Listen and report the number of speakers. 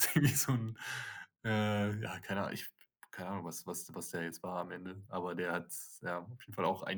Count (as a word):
one